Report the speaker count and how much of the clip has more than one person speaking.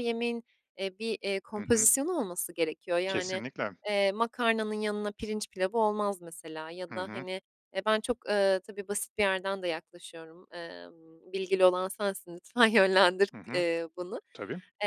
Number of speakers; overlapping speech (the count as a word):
two, about 9%